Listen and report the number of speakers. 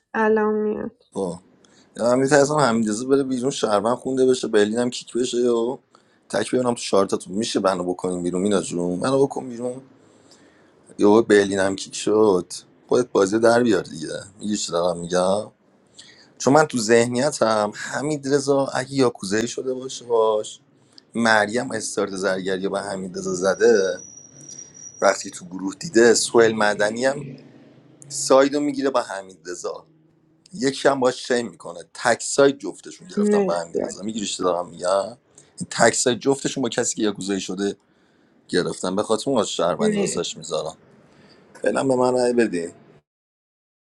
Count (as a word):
two